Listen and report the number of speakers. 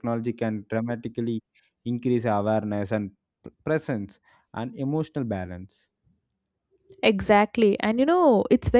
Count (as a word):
two